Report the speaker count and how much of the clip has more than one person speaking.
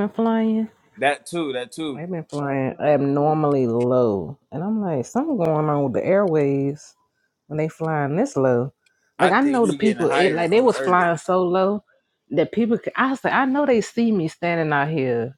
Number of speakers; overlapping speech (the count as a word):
two, about 12%